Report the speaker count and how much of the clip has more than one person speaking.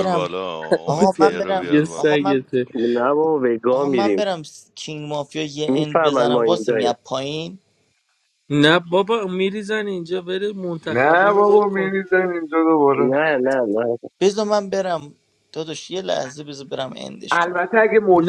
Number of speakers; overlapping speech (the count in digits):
5, about 29%